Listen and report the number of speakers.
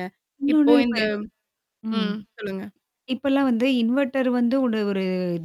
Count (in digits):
2